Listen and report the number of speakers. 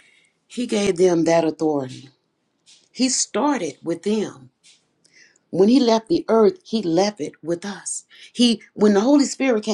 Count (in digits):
1